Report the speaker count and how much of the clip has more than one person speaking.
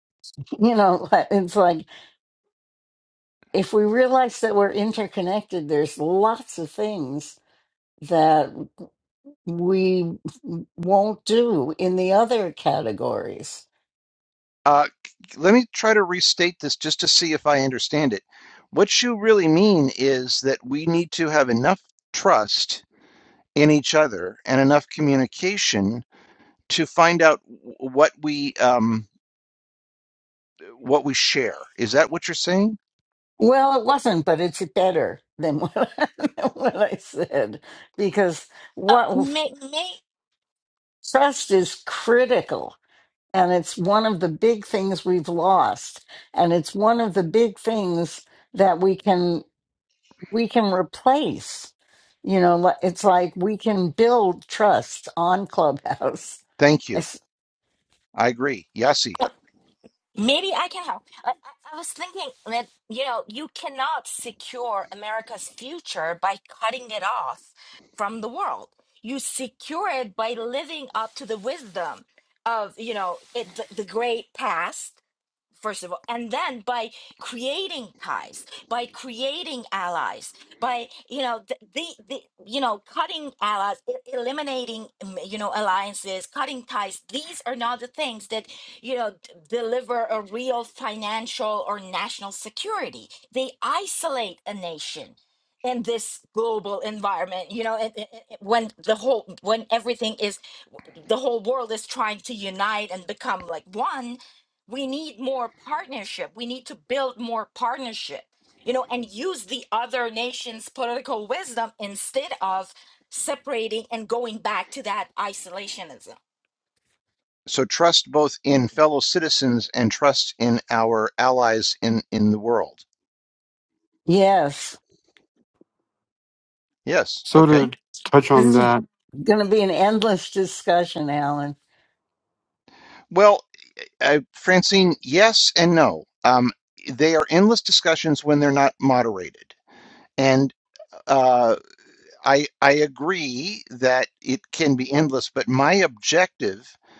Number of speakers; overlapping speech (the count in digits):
4, about 1%